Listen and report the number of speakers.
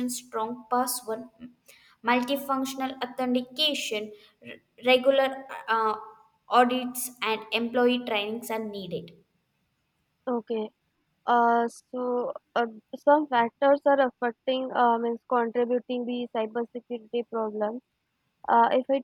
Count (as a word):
two